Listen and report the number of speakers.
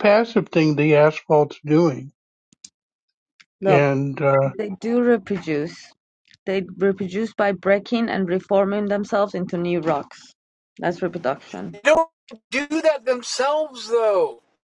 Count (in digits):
3